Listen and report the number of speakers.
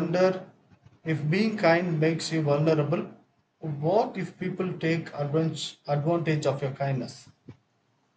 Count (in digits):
1